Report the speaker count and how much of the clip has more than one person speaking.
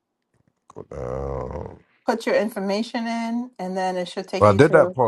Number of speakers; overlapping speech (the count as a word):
two, about 11%